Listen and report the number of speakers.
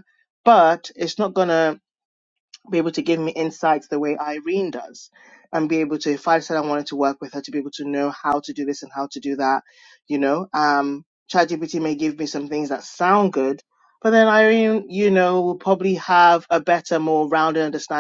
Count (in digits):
1